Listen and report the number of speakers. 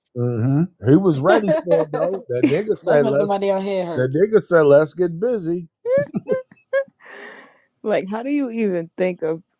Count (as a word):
three